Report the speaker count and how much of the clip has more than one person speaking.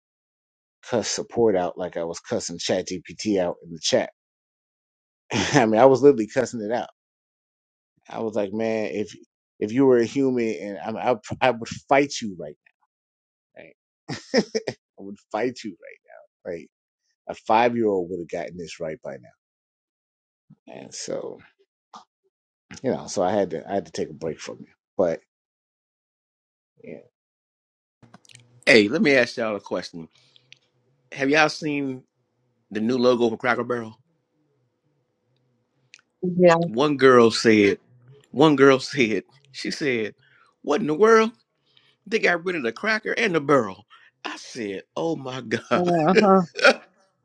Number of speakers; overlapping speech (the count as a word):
three, under 1%